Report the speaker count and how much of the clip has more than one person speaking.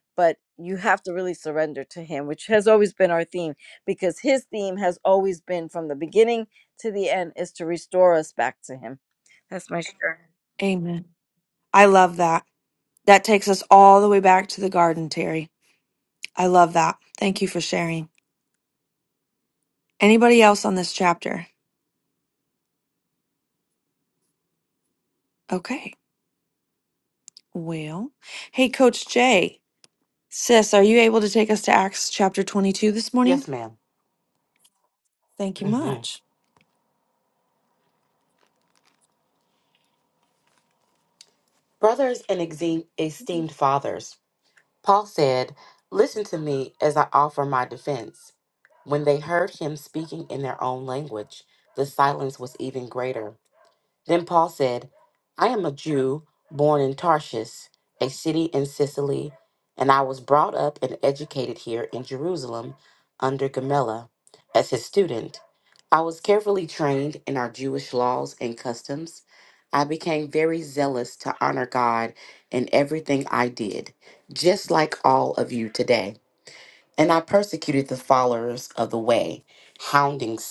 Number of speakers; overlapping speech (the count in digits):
3, about 1%